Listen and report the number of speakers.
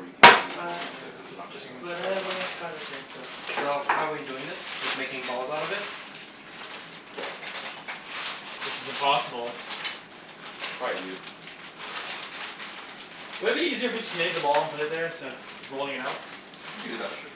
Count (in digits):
3